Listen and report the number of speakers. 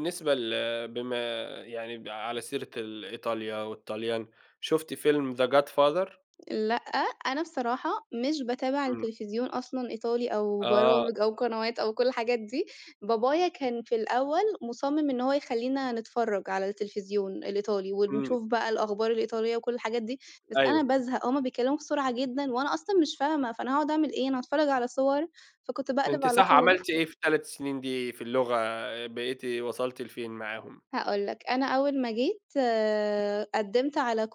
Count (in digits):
2